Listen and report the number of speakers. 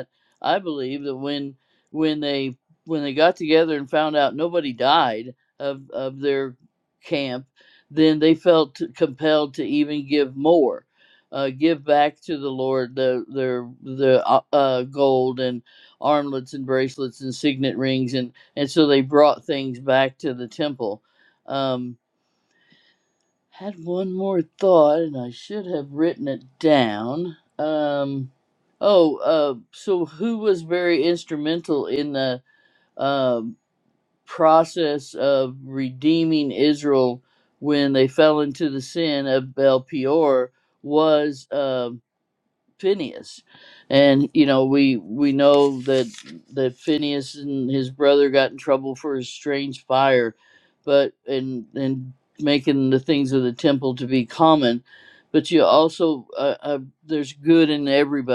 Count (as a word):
one